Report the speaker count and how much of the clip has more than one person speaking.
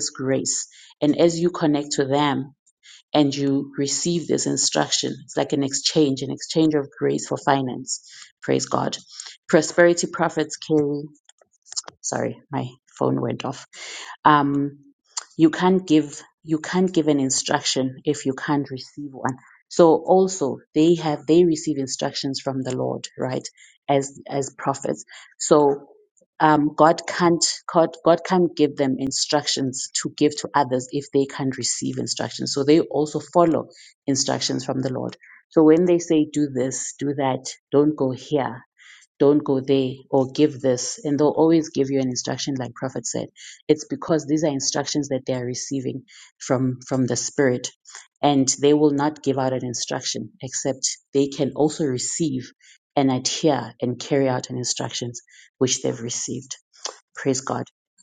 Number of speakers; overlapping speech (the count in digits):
1, no overlap